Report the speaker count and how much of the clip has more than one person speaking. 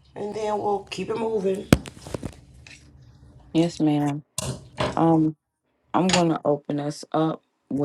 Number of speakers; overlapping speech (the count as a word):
two, no overlap